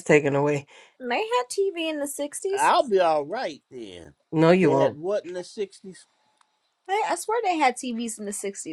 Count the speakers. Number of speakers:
3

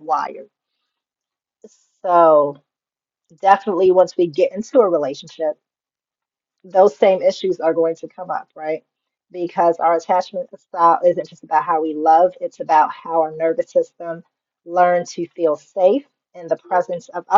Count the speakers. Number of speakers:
1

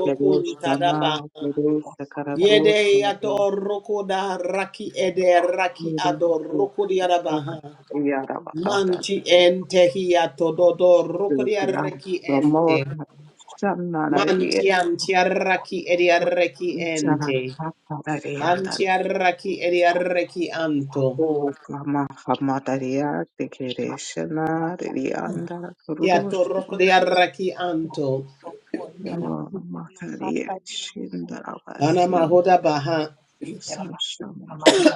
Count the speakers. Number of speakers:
2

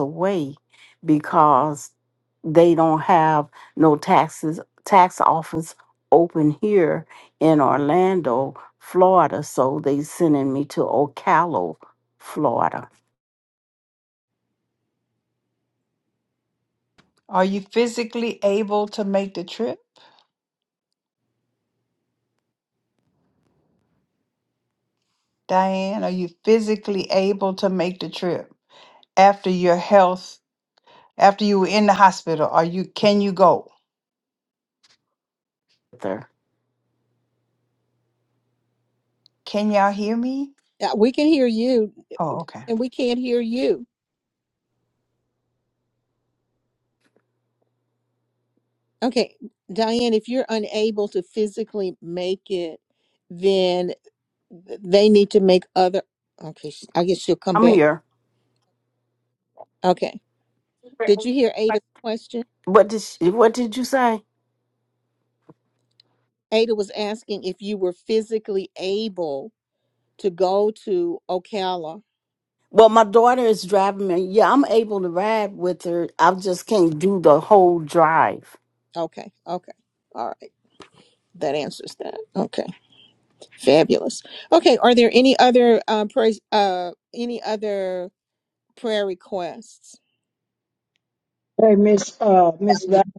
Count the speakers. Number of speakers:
4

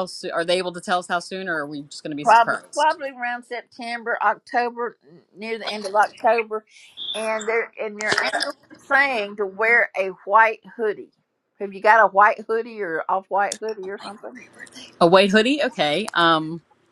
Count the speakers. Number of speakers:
2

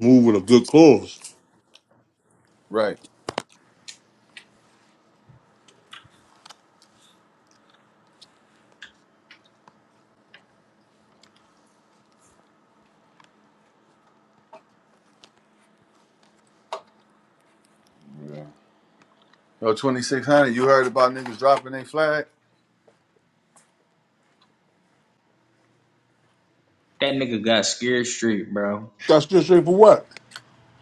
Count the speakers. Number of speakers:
3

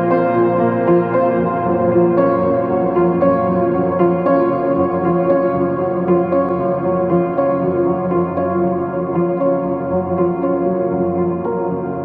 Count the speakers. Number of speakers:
0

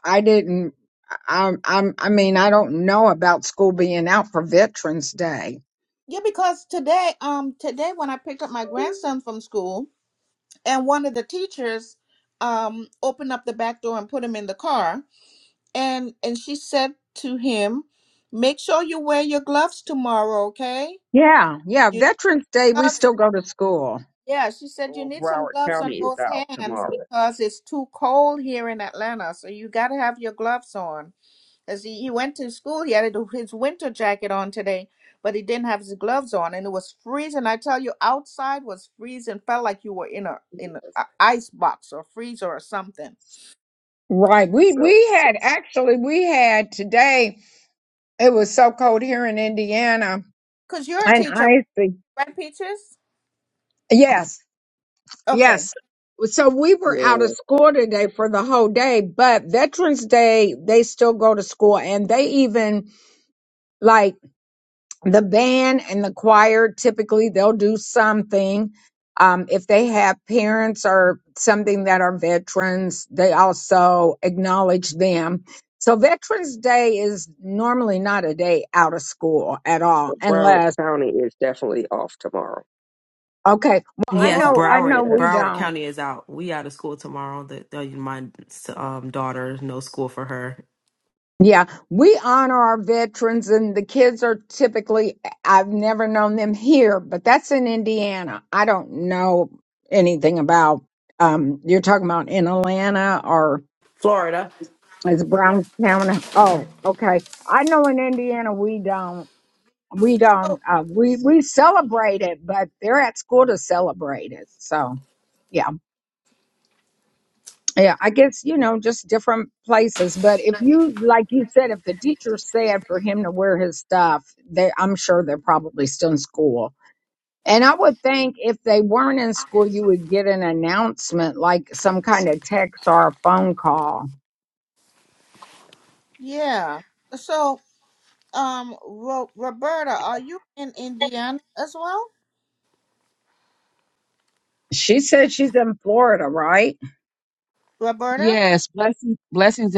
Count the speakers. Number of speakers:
5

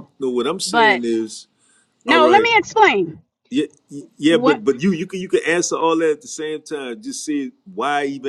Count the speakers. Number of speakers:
2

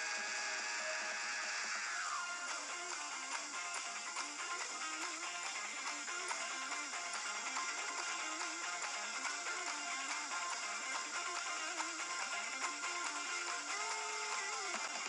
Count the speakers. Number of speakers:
0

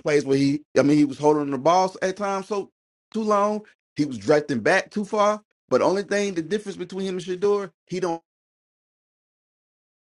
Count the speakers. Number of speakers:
1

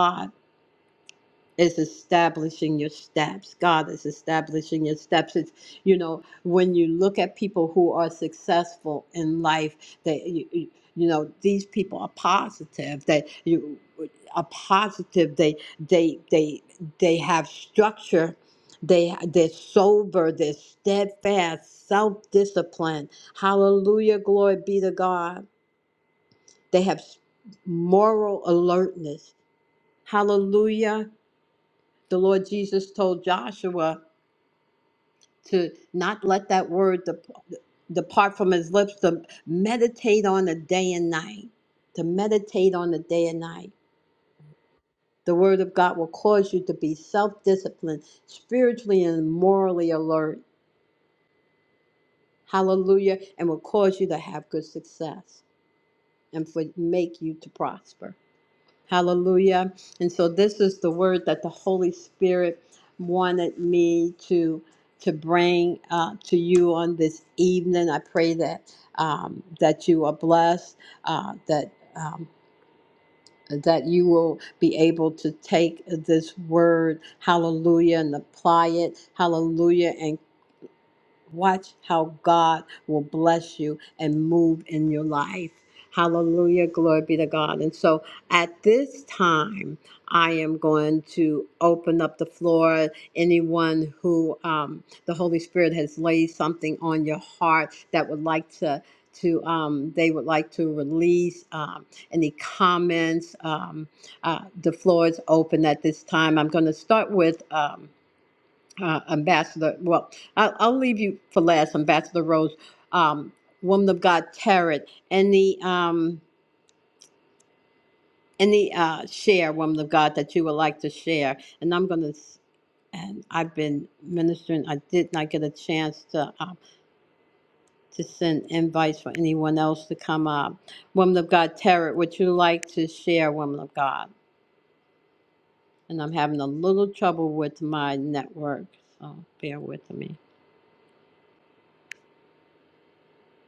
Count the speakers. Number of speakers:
1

